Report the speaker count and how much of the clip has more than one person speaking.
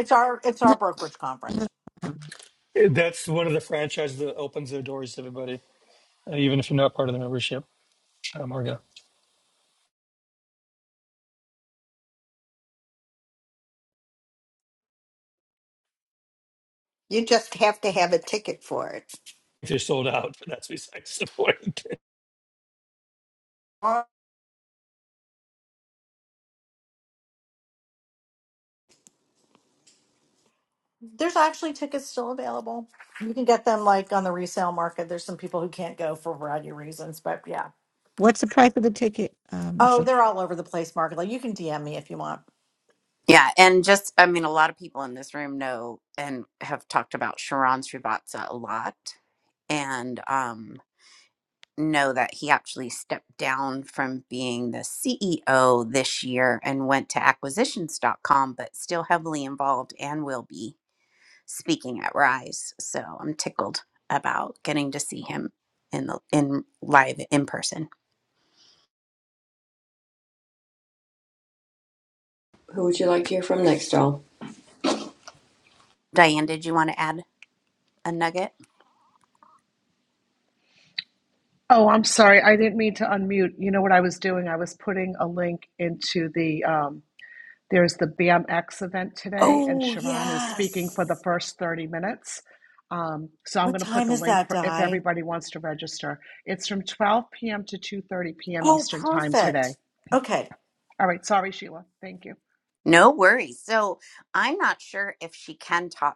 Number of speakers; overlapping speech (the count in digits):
7, about 4%